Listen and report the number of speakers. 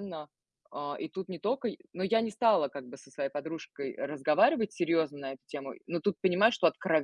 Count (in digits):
1